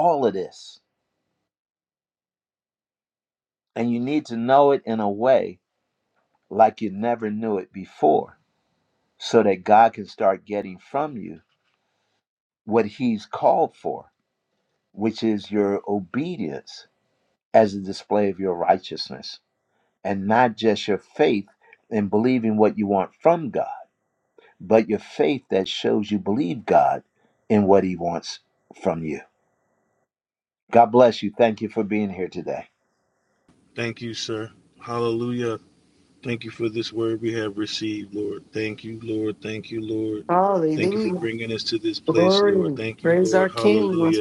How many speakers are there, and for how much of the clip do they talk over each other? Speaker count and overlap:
three, about 4%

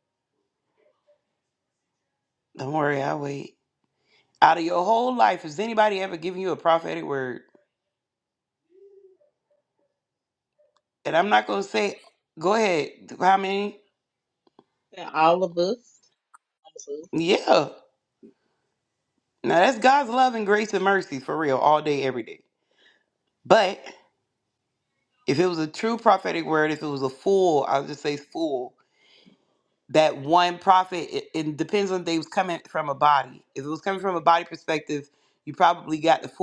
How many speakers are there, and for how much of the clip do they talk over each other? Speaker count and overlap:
two, no overlap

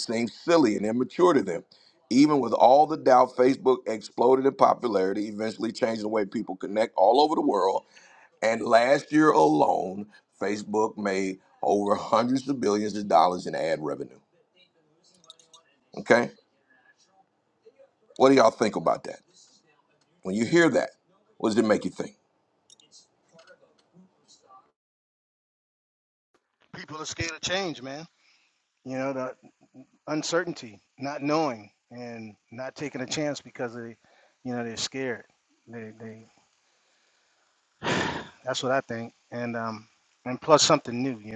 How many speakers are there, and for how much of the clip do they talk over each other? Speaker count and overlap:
two, no overlap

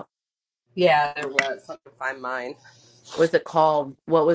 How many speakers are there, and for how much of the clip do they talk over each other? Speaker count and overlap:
two, no overlap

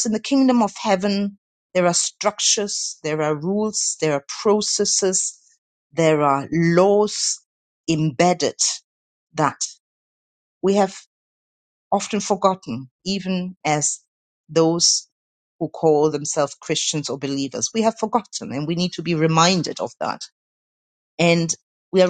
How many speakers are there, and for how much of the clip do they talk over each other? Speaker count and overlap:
one, no overlap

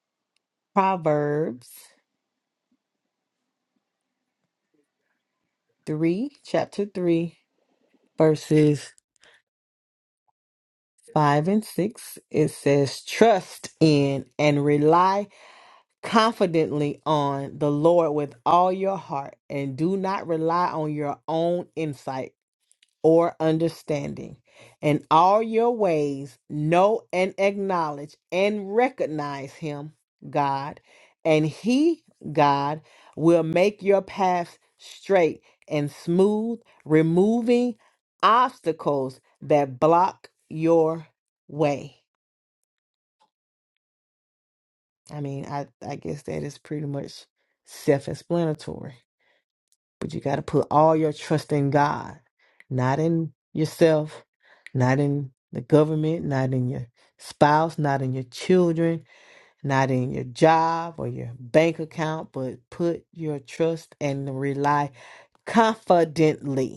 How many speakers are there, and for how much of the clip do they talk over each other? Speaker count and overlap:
one, no overlap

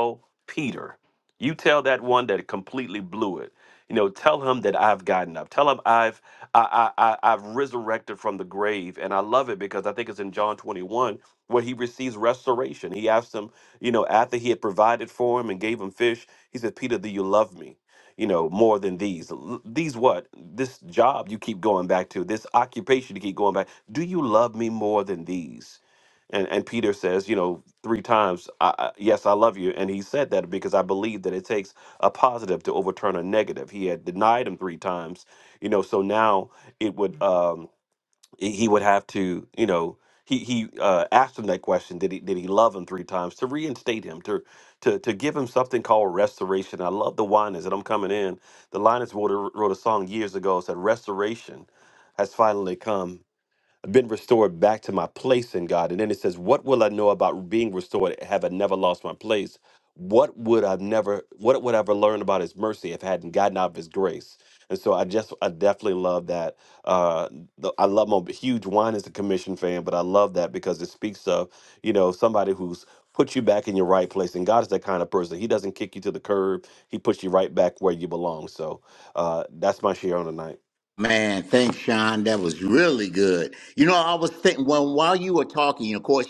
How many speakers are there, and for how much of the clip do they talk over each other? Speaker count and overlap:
two, no overlap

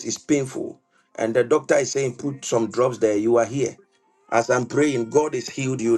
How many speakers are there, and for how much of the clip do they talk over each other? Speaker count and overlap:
one, no overlap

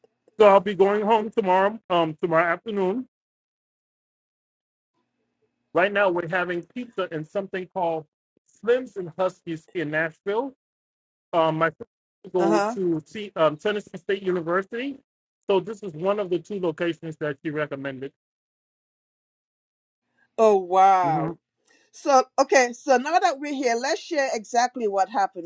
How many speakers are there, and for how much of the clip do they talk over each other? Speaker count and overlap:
two, about 3%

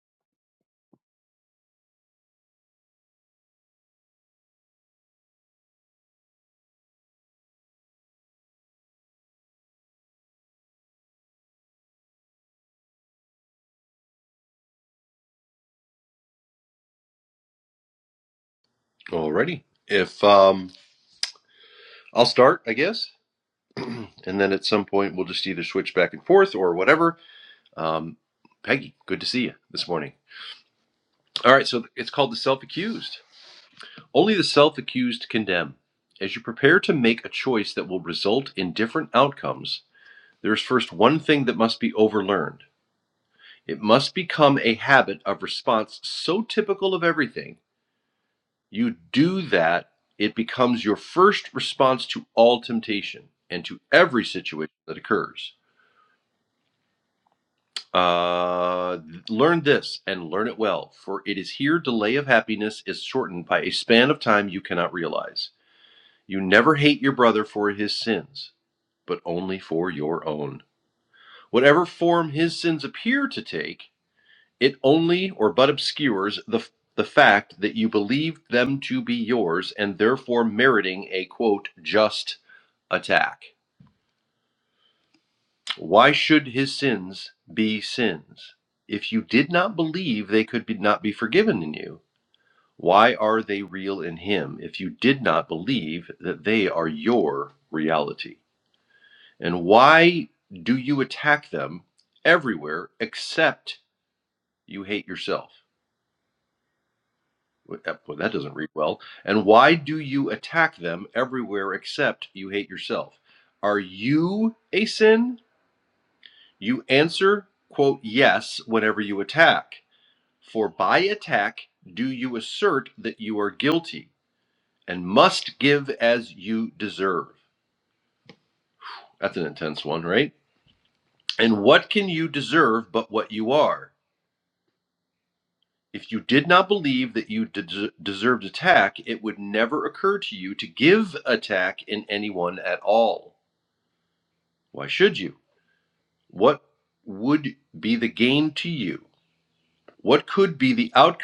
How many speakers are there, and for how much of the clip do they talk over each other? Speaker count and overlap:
one, no overlap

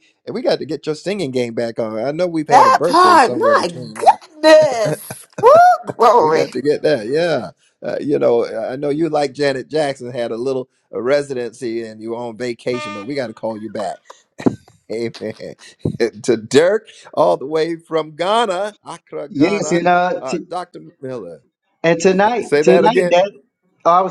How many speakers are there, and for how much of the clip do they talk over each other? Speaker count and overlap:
three, about 14%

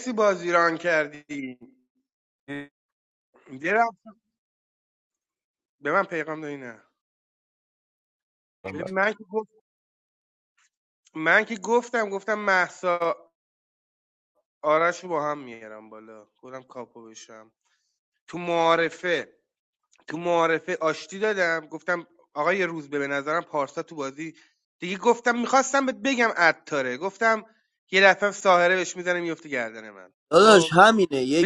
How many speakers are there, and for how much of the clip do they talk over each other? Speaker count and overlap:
two, about 1%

